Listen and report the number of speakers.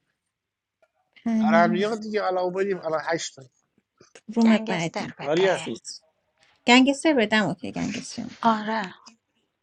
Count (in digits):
3